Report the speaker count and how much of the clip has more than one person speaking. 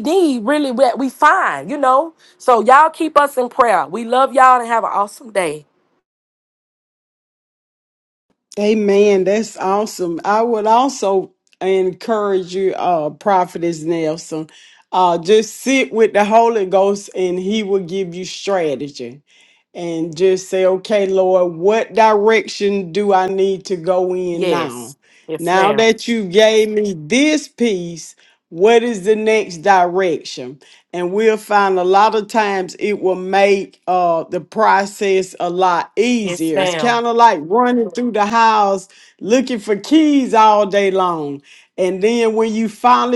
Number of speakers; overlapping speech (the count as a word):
two, about 3%